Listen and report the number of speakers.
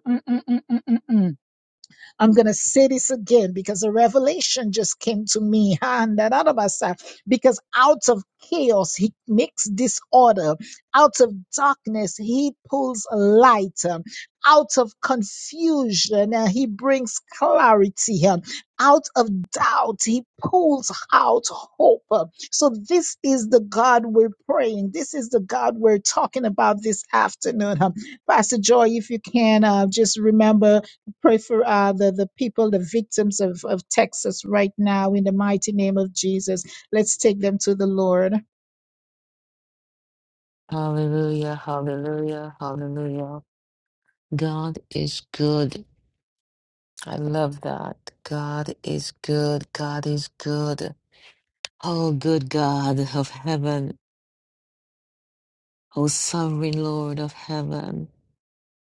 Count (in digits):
2